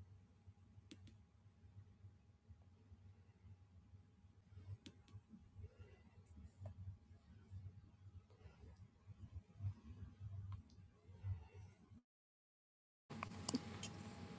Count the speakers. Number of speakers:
0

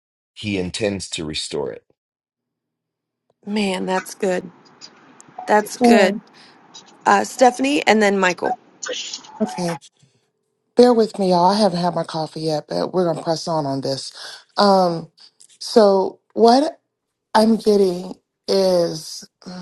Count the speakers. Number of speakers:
3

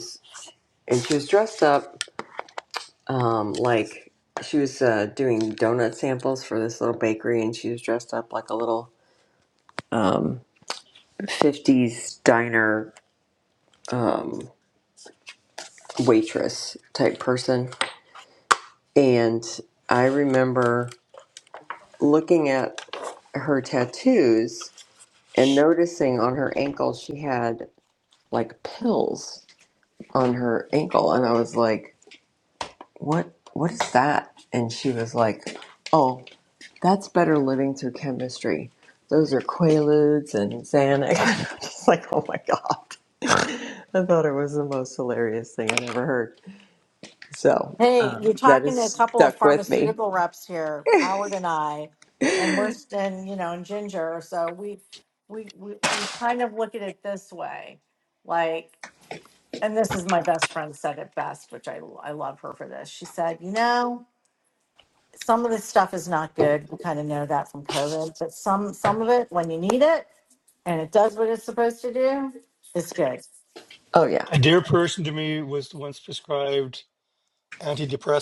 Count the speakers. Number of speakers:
3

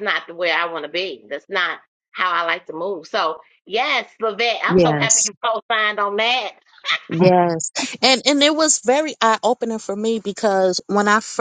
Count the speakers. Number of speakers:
2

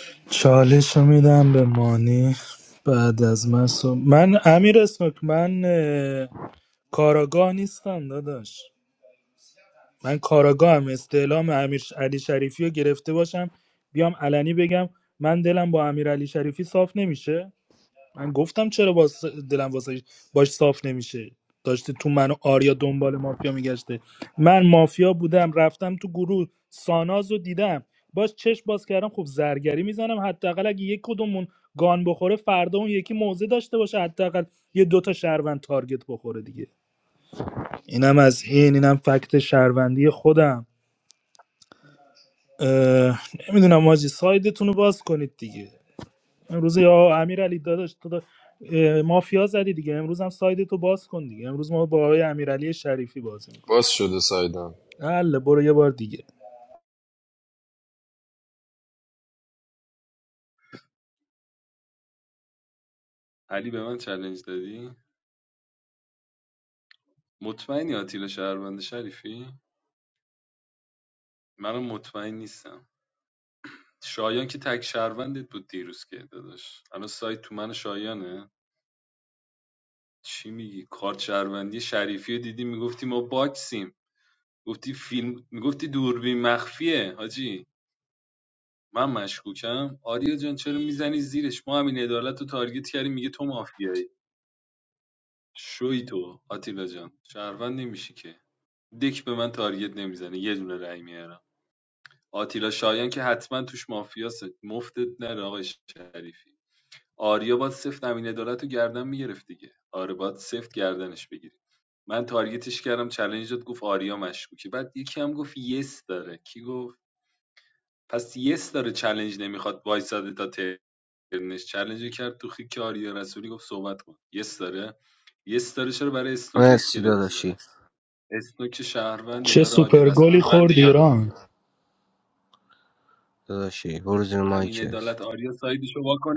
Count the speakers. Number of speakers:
4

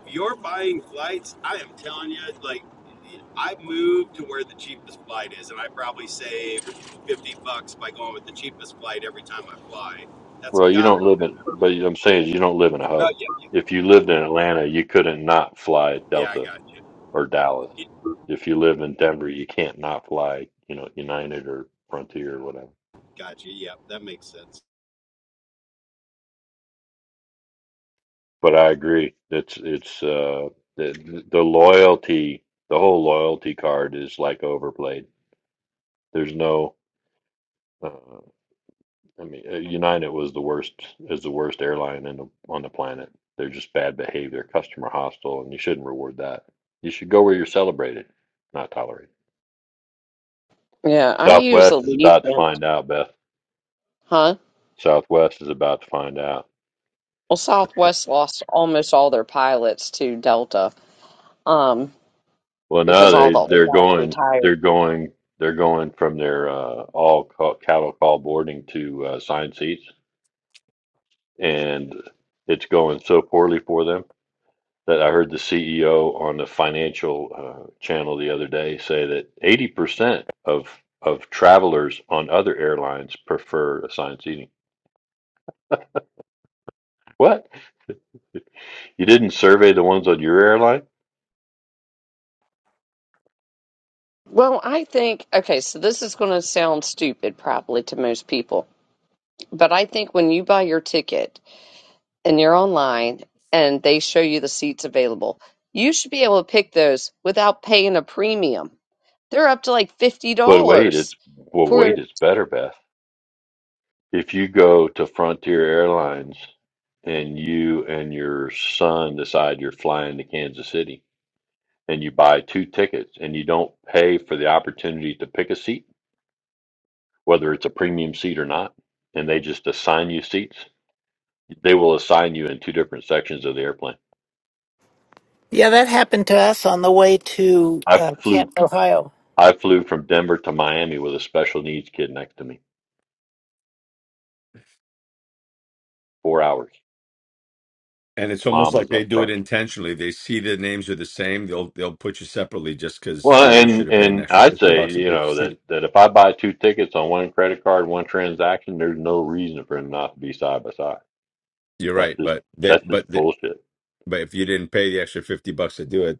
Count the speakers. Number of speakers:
5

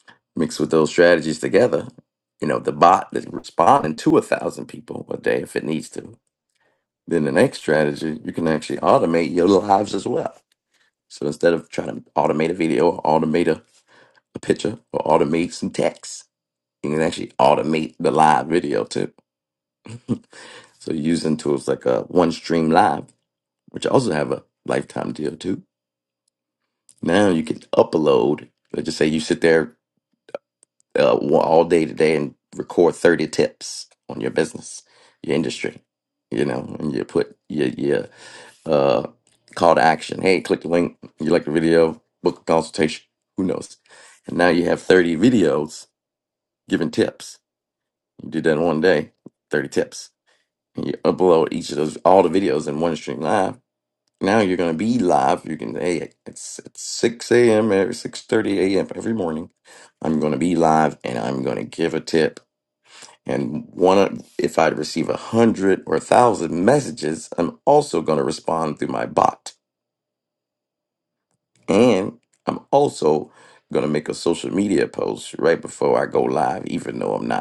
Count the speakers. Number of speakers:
1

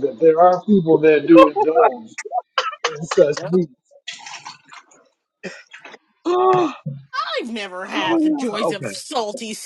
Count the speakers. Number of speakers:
3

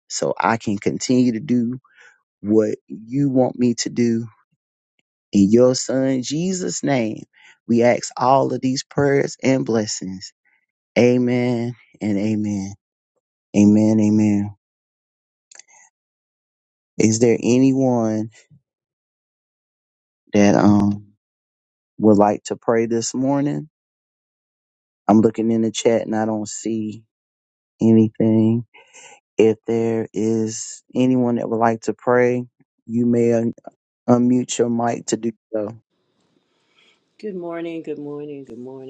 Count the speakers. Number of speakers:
2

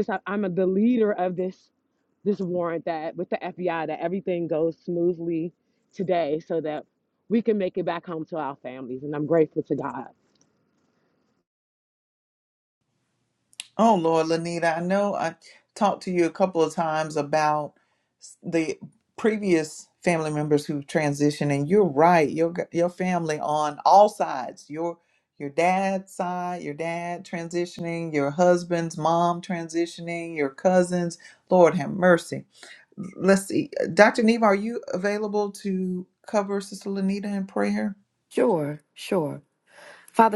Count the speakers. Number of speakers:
3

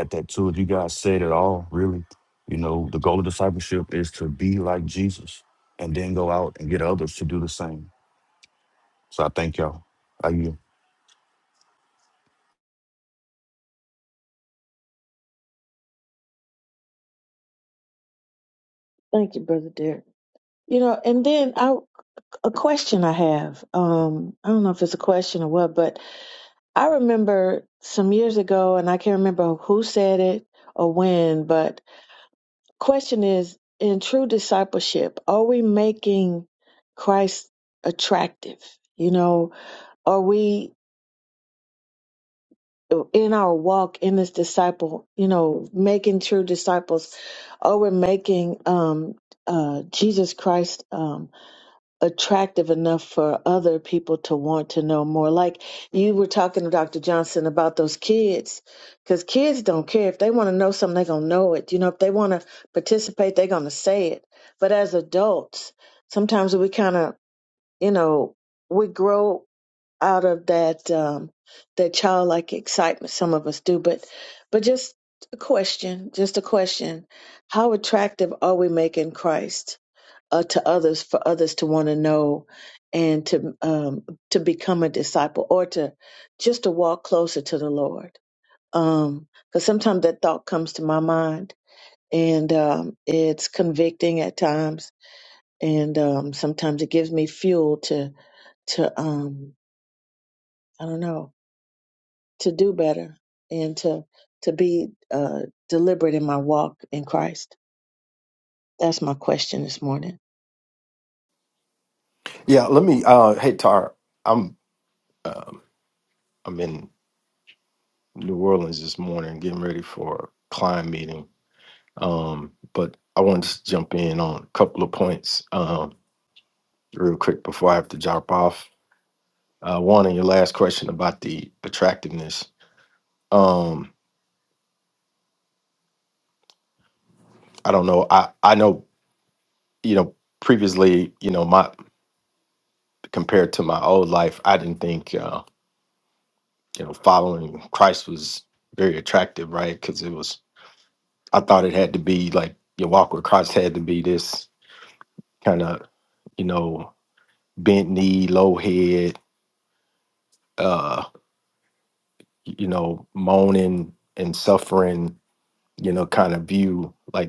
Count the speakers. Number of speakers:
3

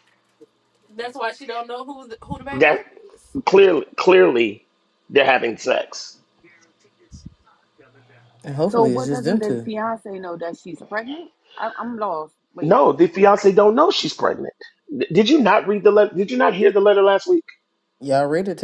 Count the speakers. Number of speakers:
4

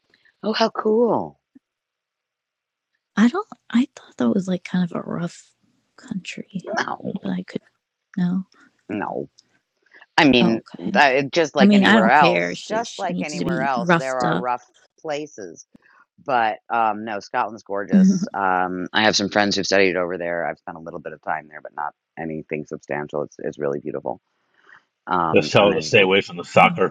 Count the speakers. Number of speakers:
3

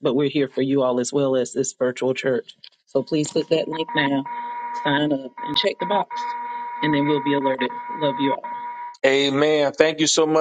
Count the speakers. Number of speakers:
2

